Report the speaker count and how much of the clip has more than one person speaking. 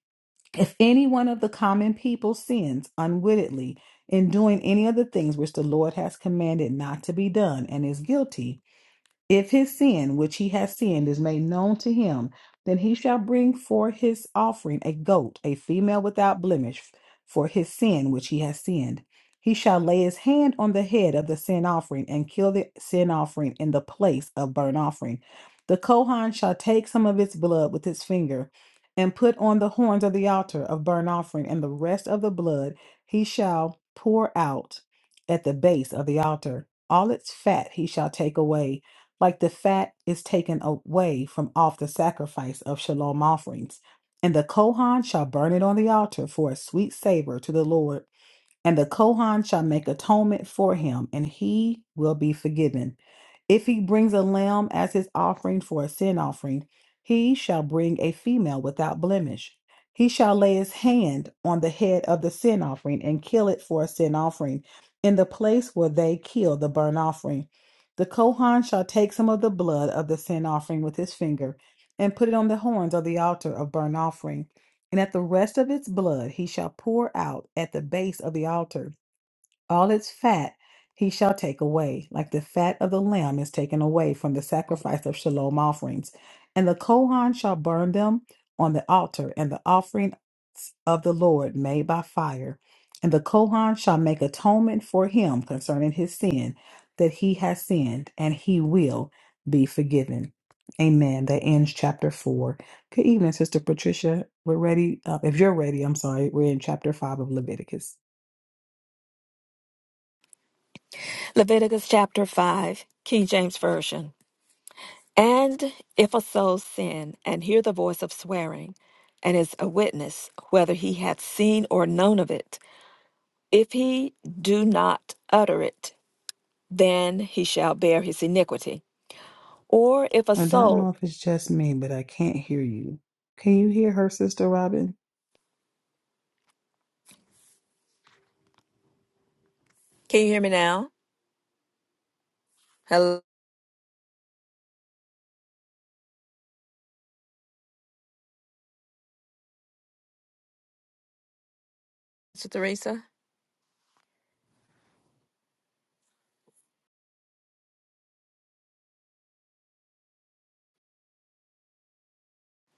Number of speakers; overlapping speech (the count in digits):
2, under 1%